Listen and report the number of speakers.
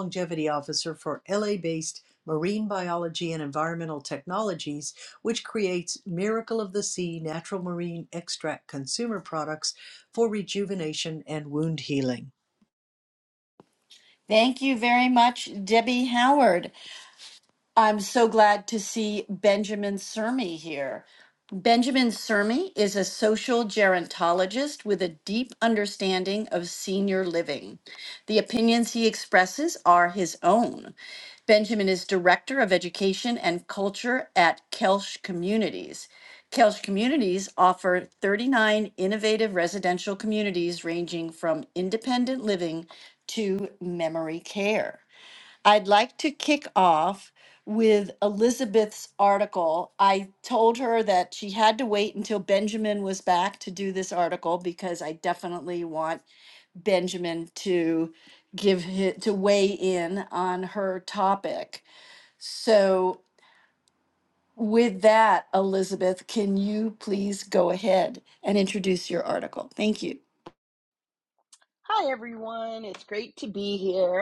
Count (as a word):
three